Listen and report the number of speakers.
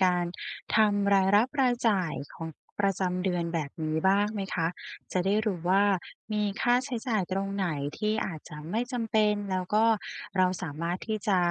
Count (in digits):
1